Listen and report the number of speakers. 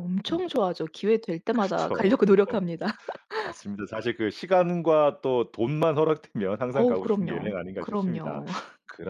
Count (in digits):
2